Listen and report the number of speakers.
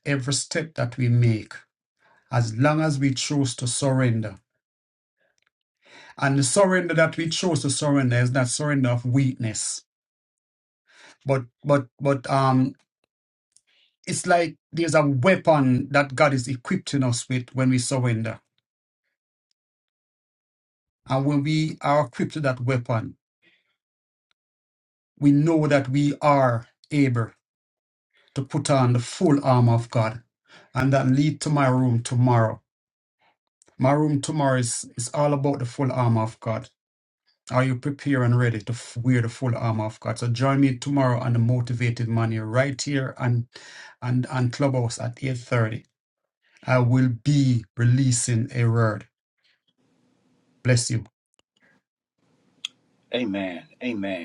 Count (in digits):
2